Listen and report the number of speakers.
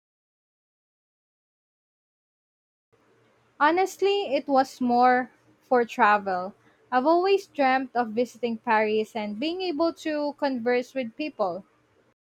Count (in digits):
1